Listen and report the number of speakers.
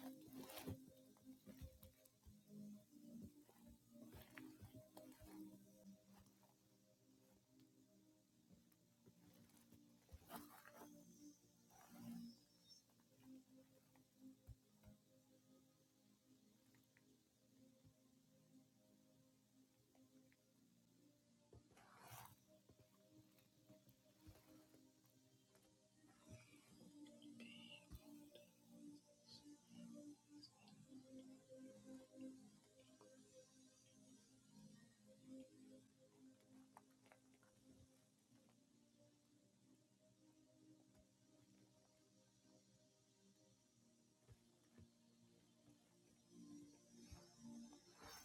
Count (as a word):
zero